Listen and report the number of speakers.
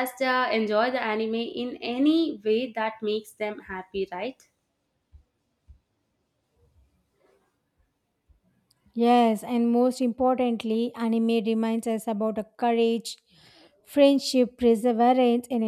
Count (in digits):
2